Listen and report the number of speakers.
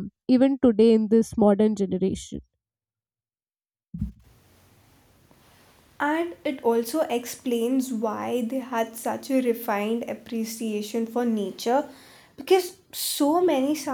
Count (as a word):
two